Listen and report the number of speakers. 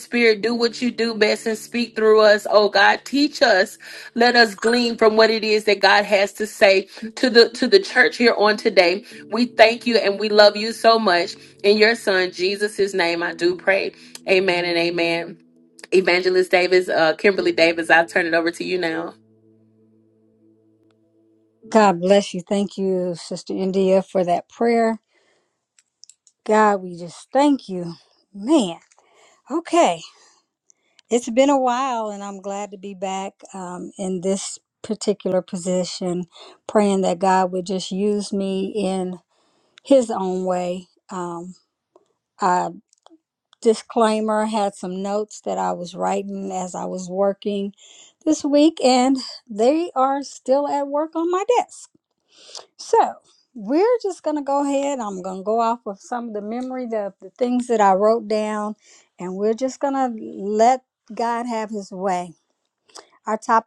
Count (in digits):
2